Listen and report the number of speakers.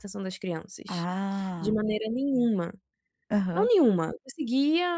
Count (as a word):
two